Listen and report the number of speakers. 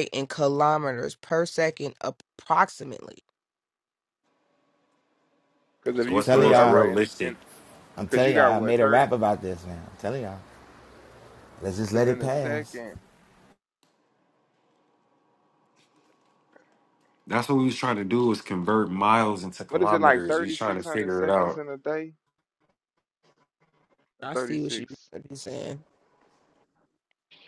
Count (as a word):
four